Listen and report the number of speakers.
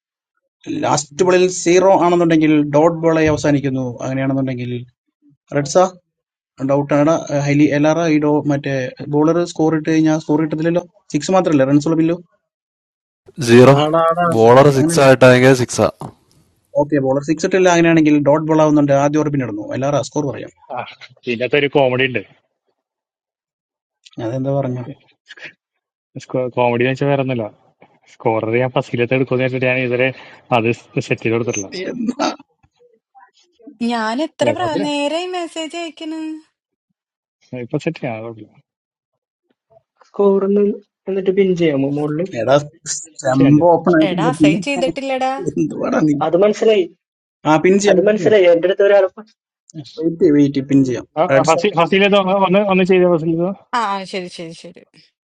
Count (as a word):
five